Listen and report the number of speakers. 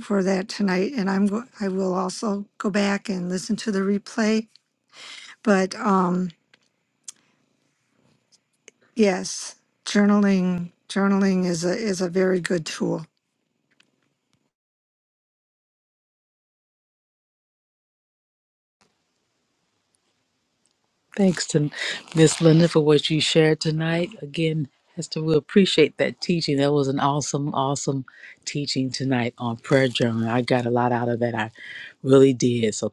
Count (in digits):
2